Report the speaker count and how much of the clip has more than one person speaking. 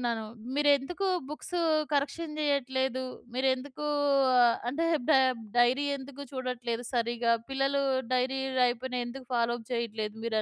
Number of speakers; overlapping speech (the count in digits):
1, no overlap